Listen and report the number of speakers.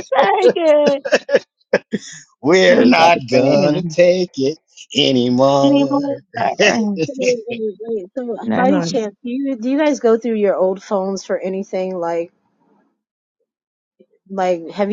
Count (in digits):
3